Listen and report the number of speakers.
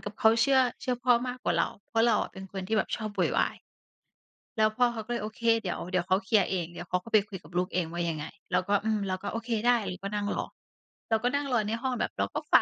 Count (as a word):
one